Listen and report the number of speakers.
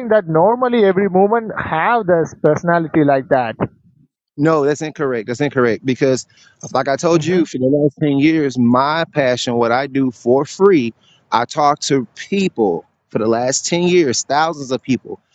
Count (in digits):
2